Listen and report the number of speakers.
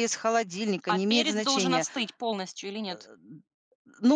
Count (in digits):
2